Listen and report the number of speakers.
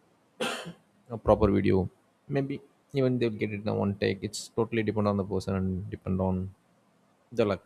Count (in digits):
1